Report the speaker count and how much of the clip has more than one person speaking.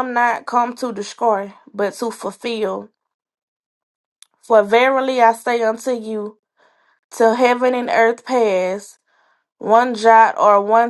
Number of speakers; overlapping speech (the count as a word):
one, no overlap